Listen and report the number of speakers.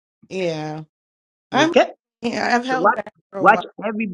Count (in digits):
2